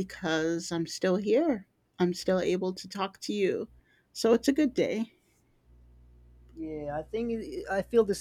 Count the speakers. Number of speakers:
two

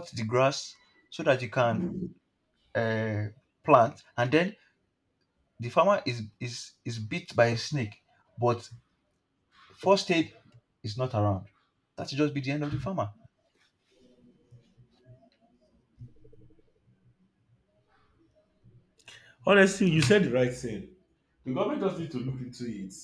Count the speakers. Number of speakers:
two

